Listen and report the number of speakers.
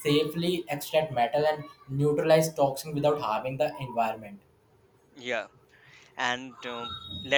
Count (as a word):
two